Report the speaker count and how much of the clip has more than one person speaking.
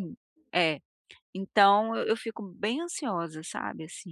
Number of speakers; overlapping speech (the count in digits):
1, no overlap